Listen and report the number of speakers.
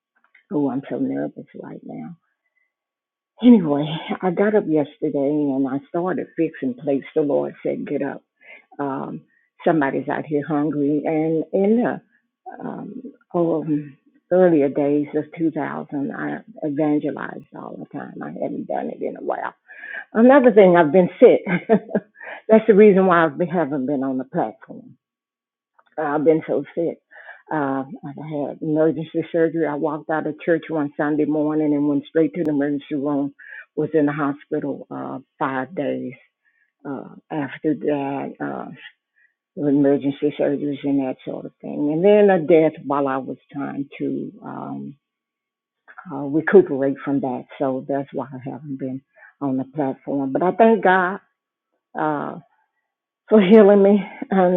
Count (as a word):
one